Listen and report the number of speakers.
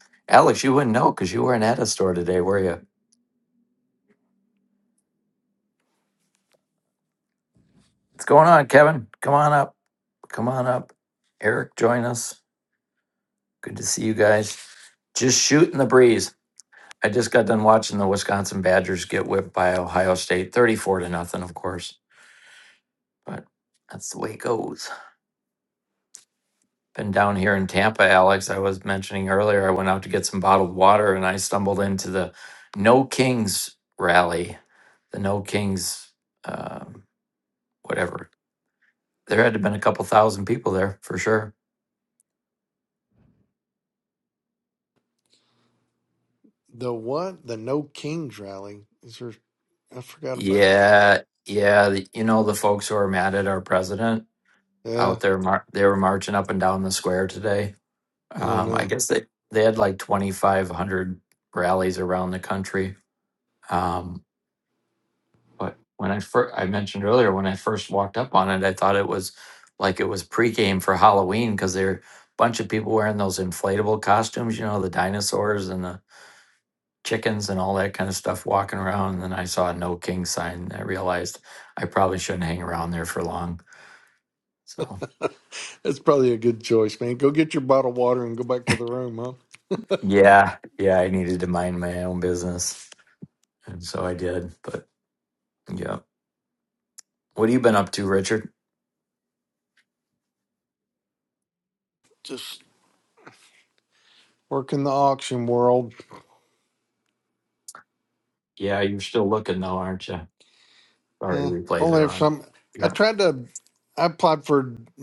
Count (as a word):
two